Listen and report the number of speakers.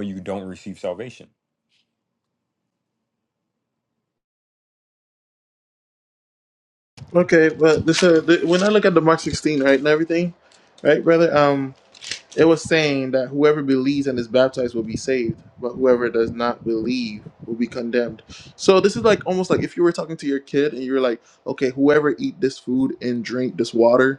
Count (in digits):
2